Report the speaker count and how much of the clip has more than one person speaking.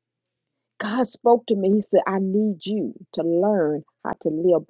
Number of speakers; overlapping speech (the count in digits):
1, no overlap